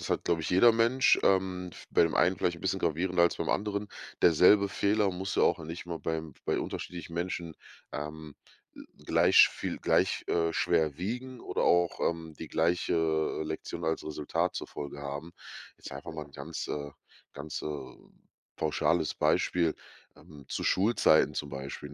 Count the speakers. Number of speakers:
one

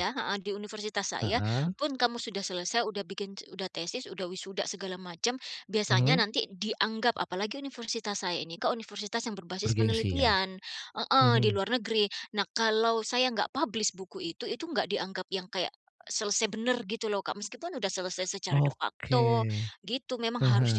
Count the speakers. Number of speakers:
two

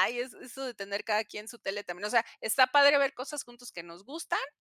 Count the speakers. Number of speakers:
one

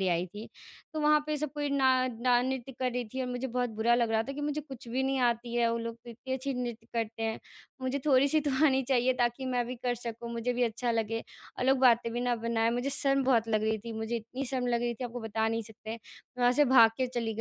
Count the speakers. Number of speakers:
one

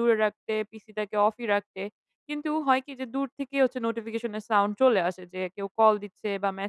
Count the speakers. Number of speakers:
one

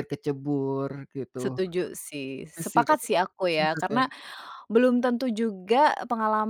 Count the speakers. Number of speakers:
two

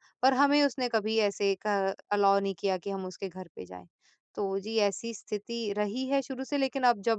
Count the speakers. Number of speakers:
one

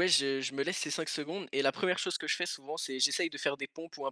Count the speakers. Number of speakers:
one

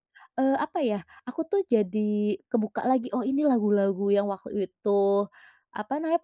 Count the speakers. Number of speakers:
one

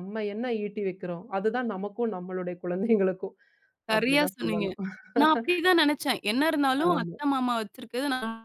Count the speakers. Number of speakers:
two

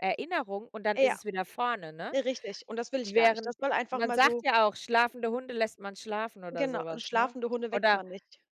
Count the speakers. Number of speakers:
two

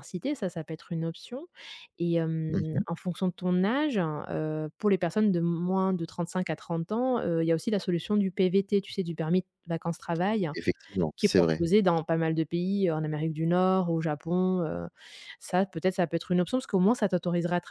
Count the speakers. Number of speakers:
two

